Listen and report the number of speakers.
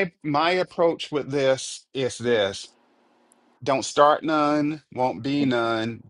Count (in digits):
1